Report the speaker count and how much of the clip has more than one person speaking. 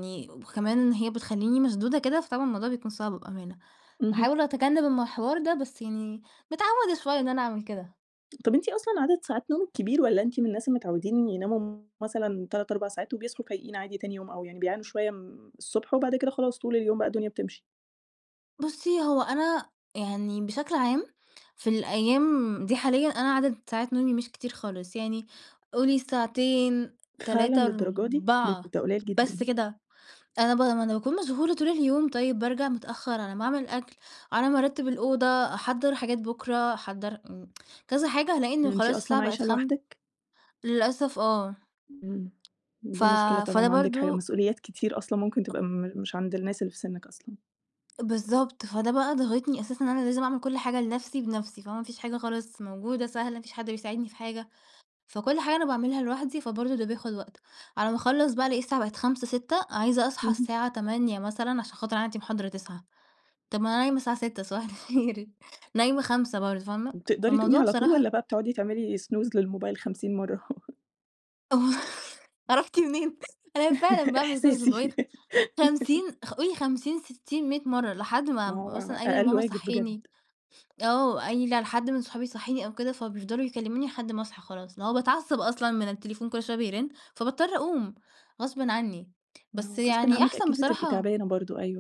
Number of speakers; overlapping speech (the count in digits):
2, about 9%